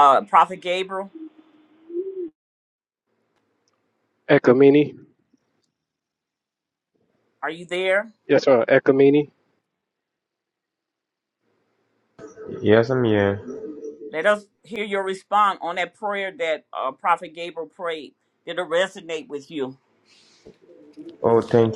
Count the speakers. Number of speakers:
three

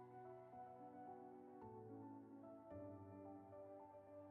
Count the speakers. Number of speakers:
zero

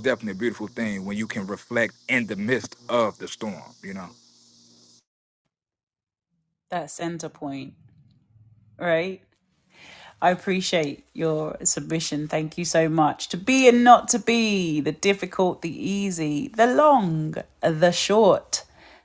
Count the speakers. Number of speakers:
two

